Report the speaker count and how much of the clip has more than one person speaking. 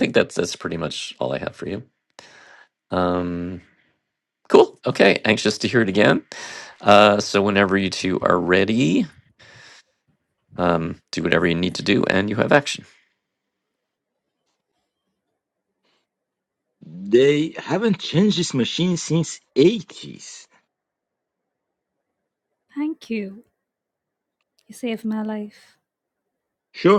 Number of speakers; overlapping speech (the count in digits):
3, no overlap